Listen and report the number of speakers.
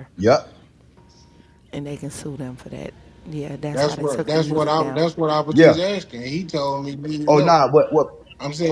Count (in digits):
3